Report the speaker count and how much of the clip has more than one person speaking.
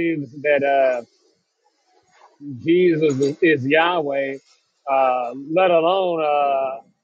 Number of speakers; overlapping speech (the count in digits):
1, no overlap